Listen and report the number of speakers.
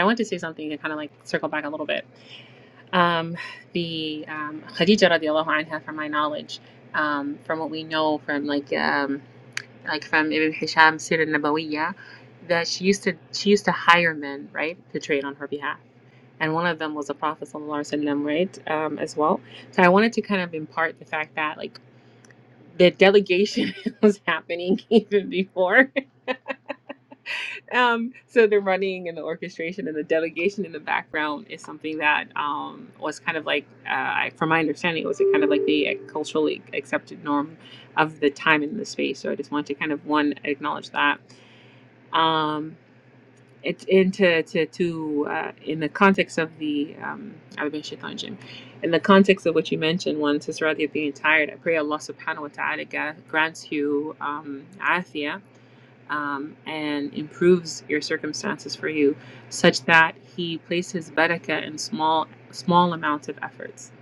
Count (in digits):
1